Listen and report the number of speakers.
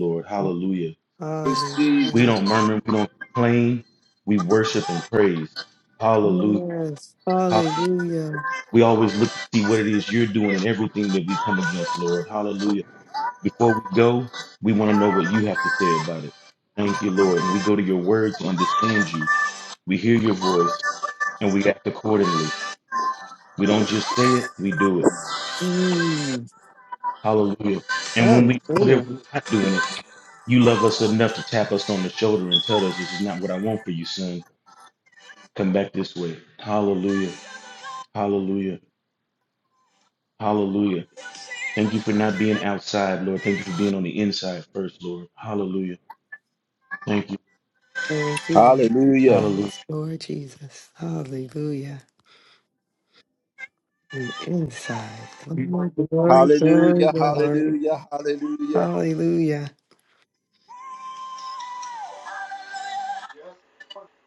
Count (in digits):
3